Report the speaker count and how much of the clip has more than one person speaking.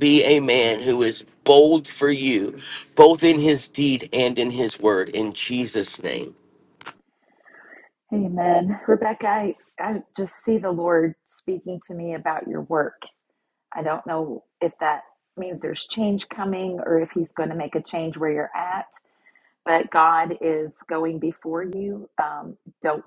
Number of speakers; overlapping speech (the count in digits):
2, no overlap